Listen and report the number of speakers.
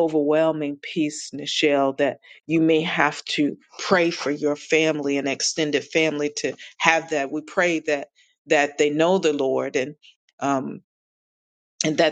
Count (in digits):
1